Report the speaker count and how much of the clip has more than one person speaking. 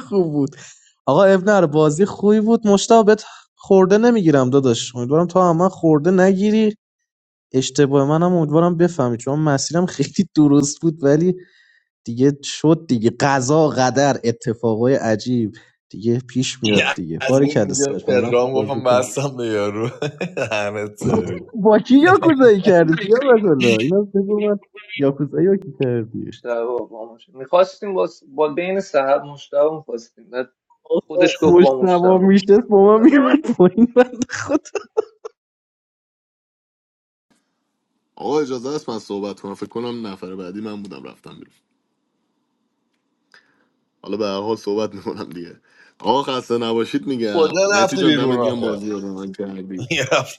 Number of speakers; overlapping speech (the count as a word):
four, about 9%